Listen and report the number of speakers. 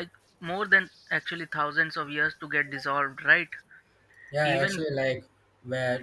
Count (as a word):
two